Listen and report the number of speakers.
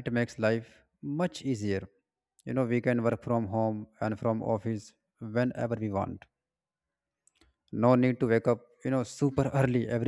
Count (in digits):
1